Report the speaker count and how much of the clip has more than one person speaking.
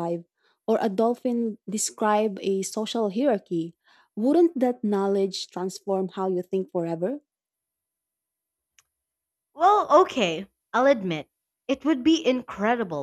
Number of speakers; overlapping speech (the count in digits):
2, no overlap